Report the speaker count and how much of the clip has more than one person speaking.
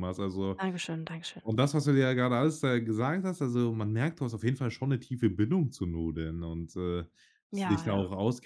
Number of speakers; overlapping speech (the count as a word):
two, about 5%